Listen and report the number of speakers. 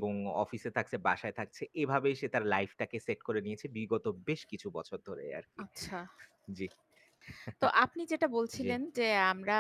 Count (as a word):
two